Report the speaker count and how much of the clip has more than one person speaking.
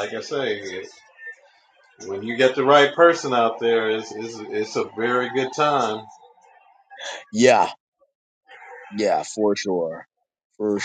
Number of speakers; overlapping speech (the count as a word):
two, no overlap